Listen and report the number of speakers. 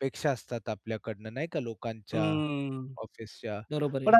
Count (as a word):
two